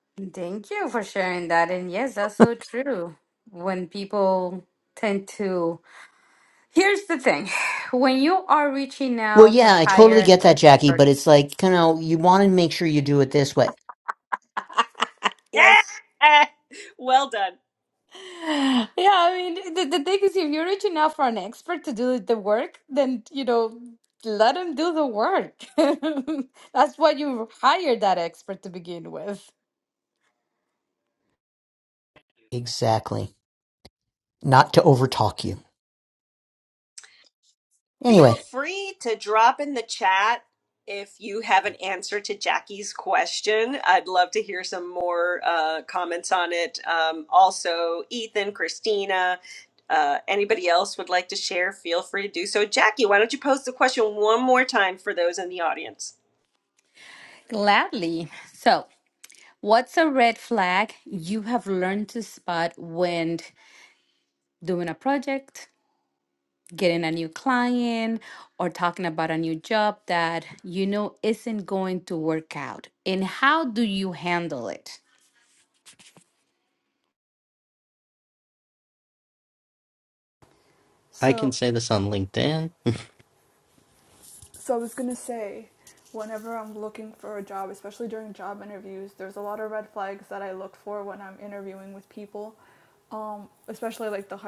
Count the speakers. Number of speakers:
5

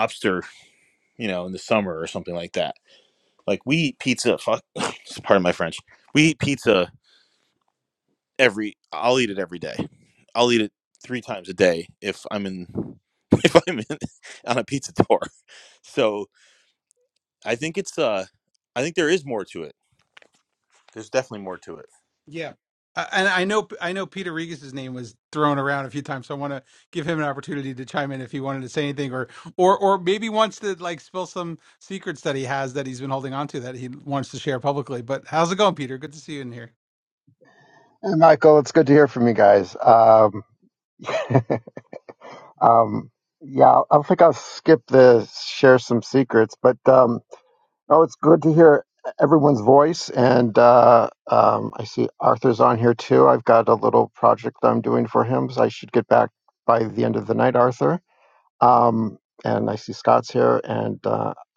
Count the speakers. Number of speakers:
3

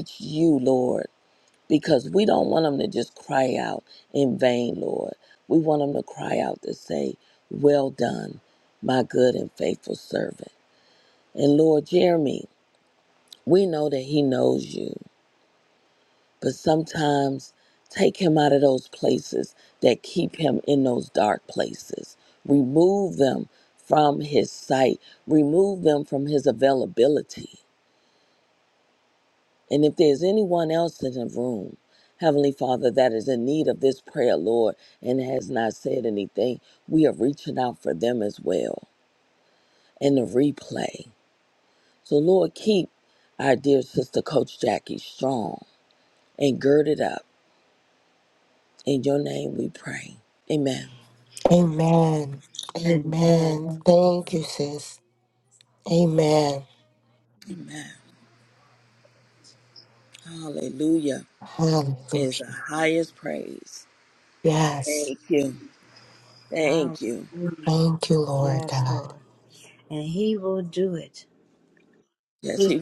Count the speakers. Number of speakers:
3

